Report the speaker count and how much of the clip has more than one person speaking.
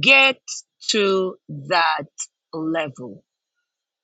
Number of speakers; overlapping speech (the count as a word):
one, no overlap